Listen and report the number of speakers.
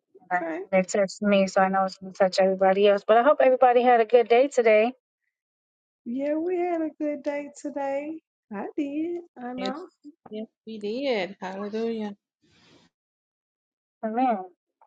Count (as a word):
three